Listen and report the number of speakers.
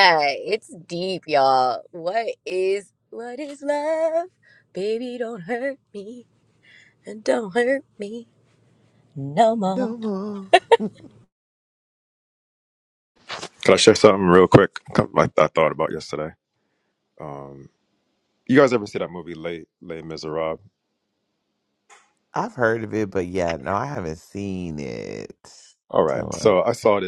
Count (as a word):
three